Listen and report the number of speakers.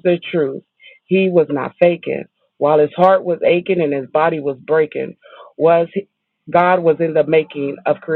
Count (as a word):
one